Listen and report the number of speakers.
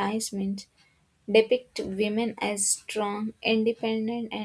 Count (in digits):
1